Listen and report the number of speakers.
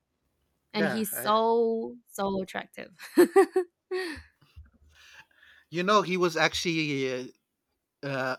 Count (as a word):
two